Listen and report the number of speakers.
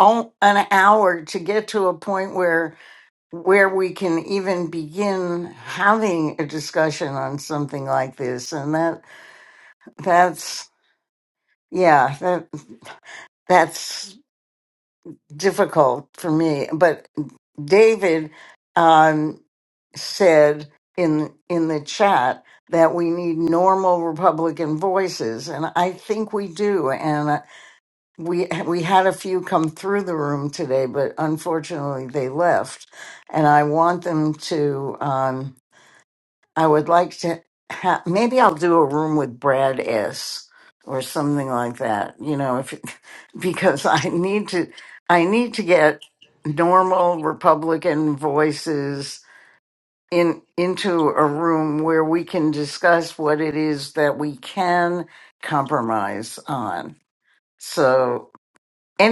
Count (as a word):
one